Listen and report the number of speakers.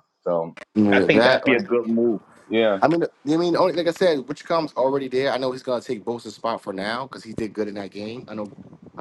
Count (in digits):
2